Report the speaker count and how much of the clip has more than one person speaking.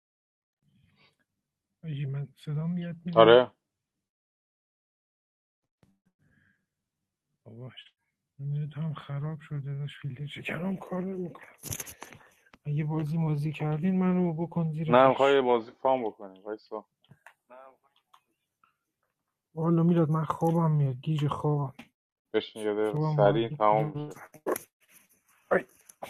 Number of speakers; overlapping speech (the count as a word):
two, about 6%